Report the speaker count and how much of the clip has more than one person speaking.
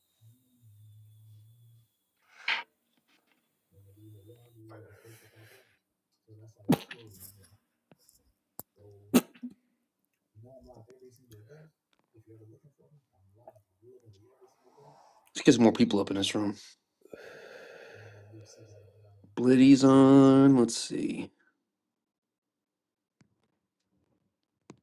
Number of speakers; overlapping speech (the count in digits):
1, no overlap